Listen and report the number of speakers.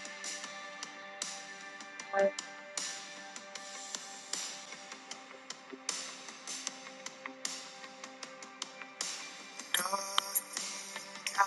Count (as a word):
zero